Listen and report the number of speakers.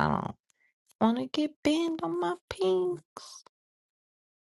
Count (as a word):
one